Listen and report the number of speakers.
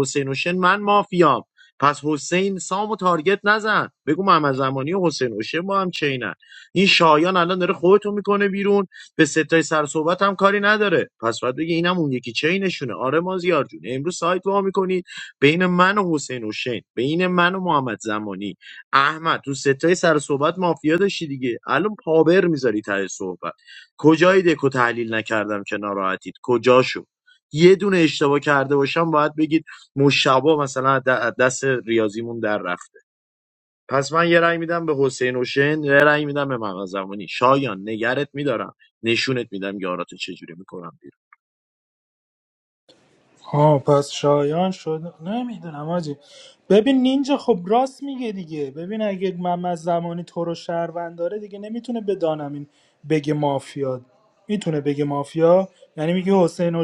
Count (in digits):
2